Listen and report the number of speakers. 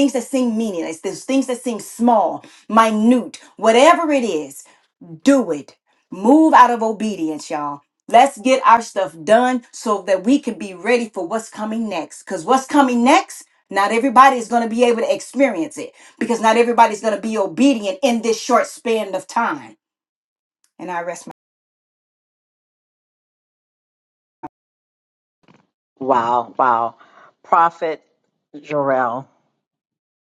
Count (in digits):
2